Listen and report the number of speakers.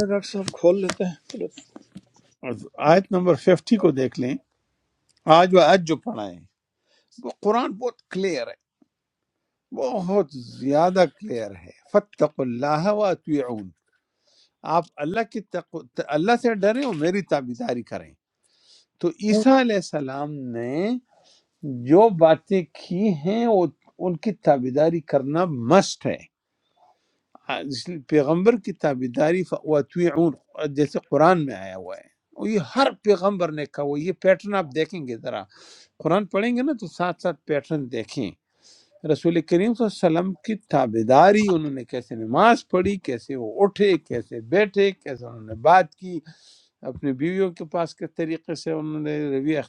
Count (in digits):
2